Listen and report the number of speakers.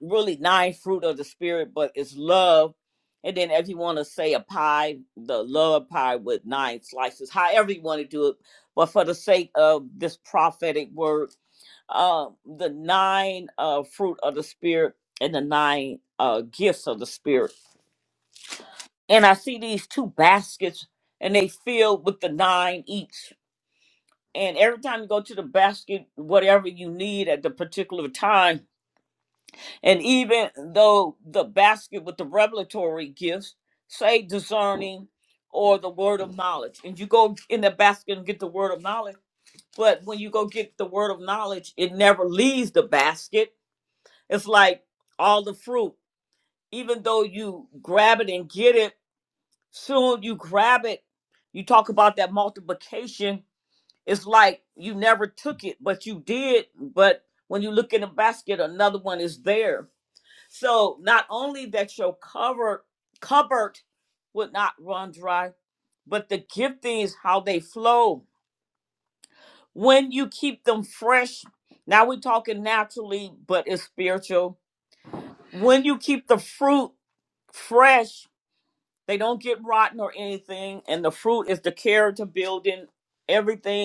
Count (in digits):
1